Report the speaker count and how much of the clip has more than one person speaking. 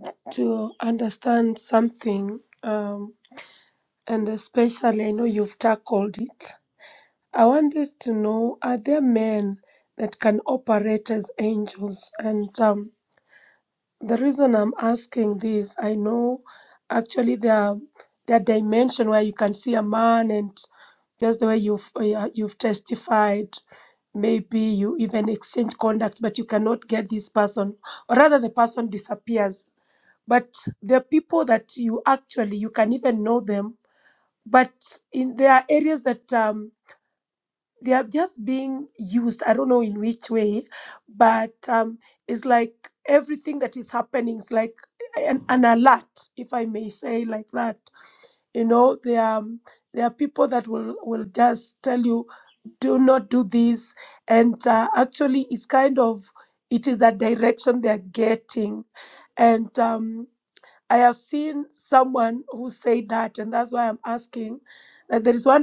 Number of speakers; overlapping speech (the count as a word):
one, no overlap